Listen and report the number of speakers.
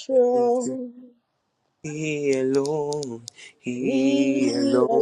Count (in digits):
2